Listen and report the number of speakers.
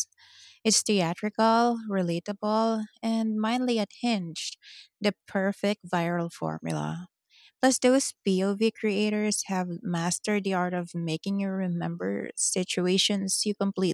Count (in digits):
1